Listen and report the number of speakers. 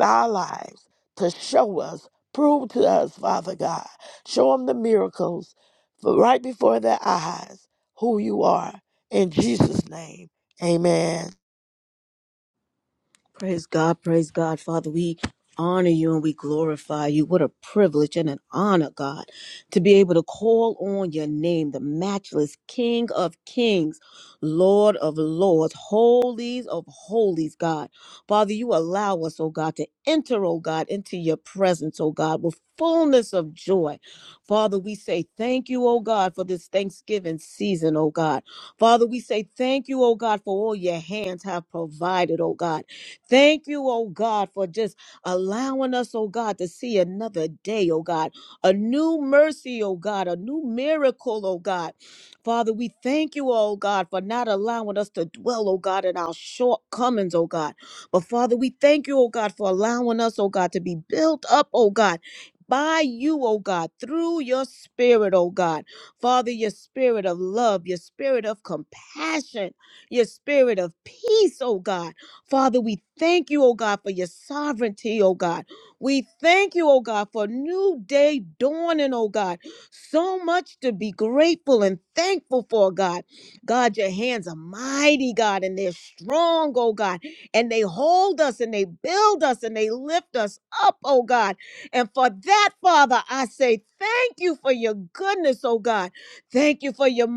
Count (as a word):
two